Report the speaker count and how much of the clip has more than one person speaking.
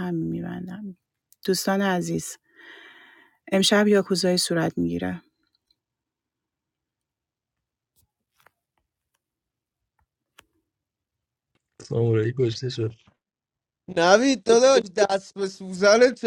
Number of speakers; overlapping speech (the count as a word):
three, no overlap